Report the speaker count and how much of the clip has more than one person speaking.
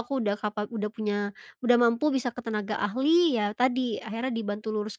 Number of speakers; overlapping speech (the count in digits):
1, no overlap